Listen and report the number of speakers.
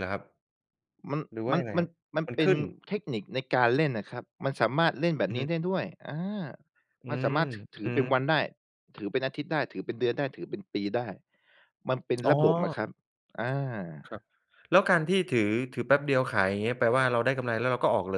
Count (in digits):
2